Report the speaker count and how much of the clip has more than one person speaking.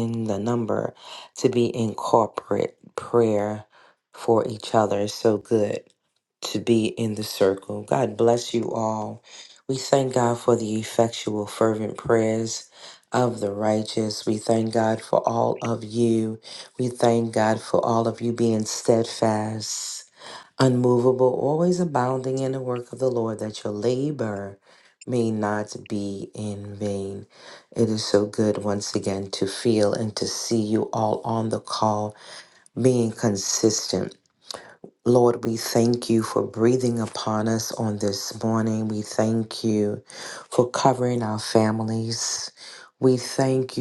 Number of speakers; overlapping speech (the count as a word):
one, no overlap